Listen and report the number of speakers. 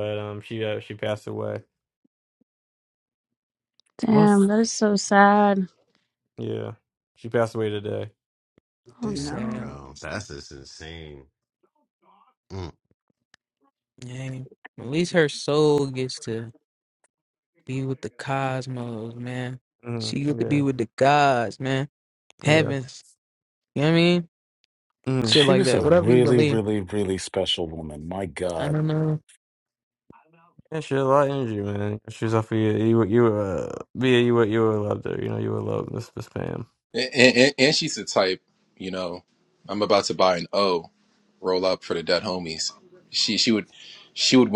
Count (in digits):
6